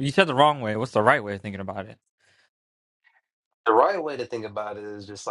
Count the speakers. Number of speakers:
2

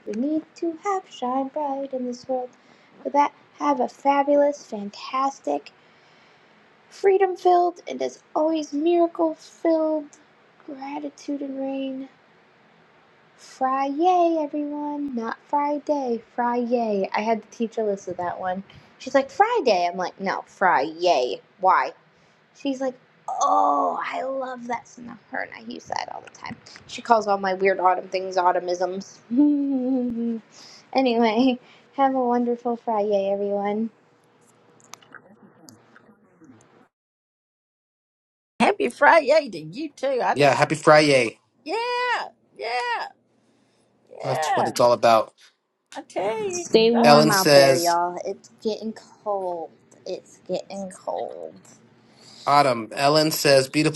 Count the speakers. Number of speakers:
3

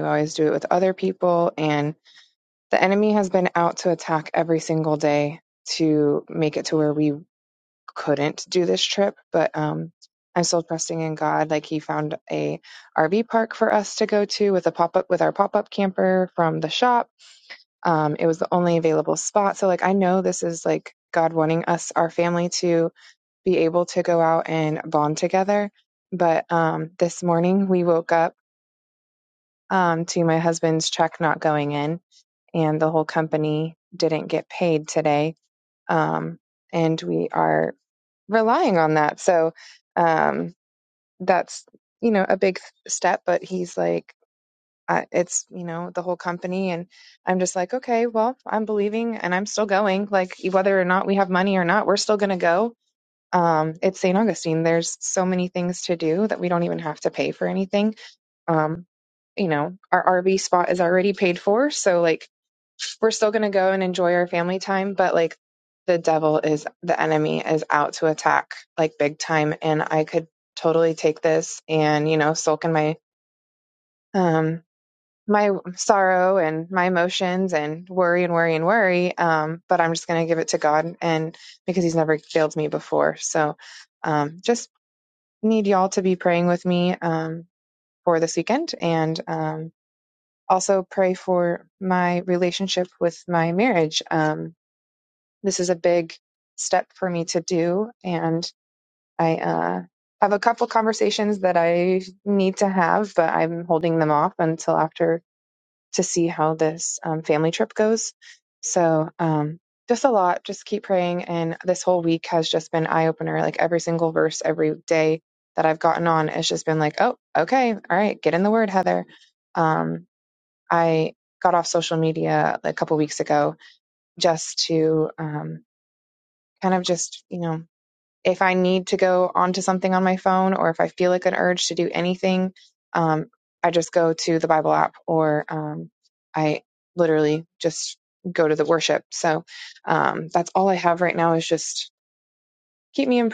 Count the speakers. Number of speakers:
1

